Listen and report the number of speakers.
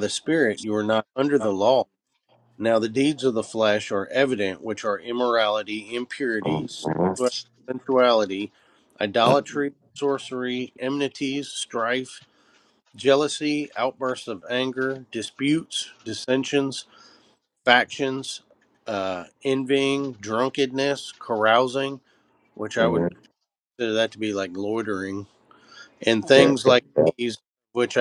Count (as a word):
two